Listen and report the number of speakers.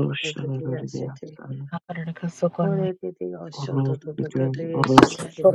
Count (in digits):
3